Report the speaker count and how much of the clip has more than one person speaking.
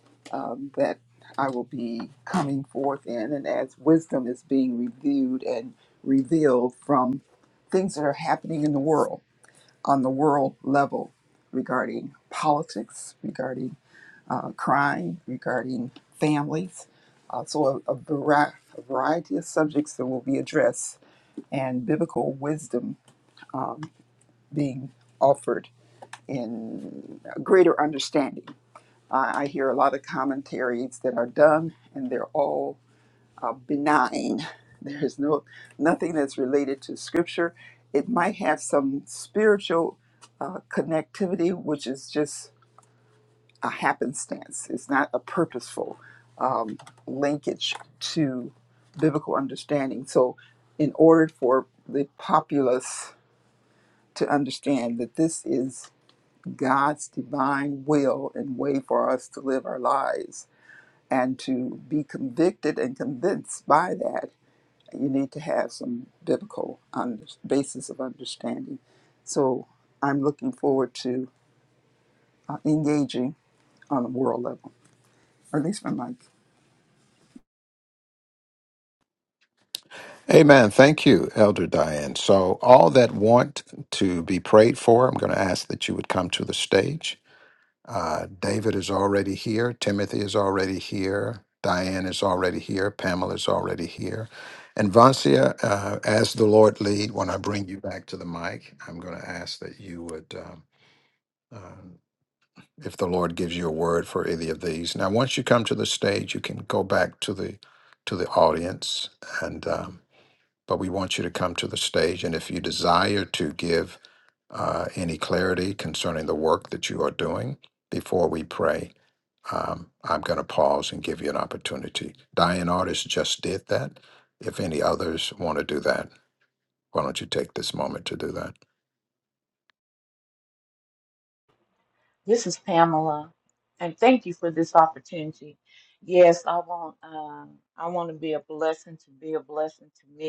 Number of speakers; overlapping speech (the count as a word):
three, no overlap